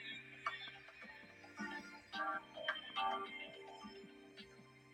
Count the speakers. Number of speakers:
0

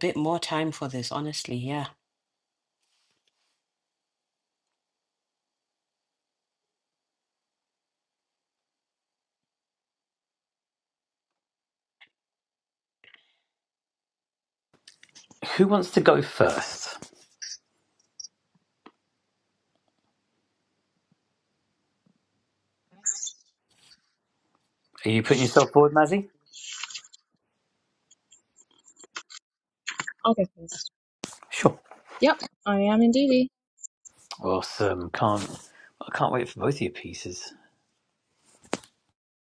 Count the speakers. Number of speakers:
3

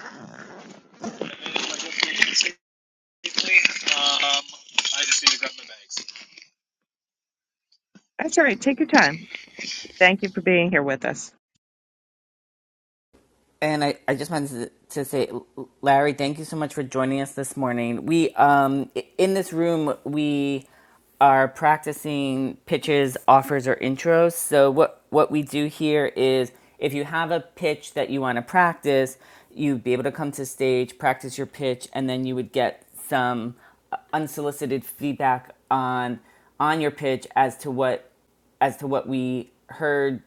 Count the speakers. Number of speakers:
3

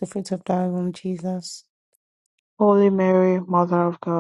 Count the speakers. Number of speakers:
2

